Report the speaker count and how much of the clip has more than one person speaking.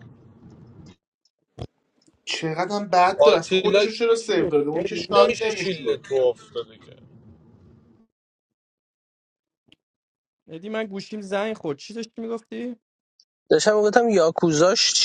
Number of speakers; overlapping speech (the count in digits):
4, about 16%